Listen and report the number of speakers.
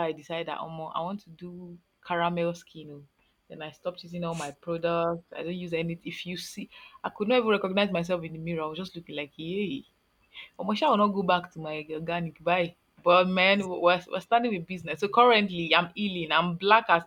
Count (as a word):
one